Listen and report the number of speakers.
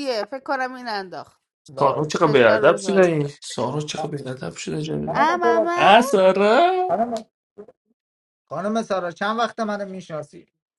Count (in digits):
3